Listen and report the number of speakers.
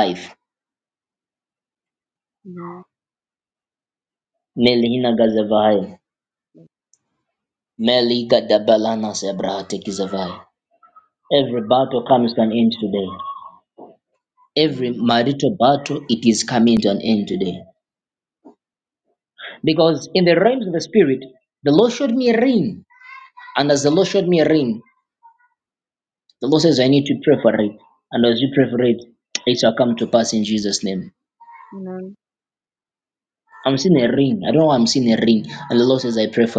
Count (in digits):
2